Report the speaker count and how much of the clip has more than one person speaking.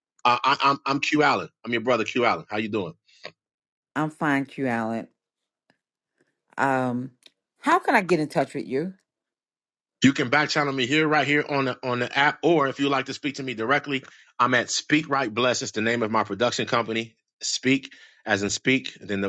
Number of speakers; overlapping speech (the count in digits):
2, no overlap